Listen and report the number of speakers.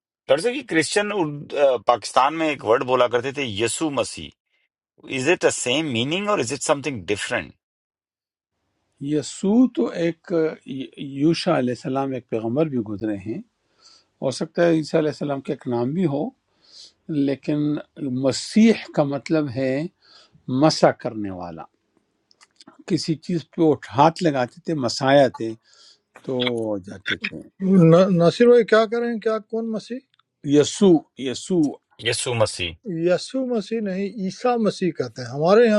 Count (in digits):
3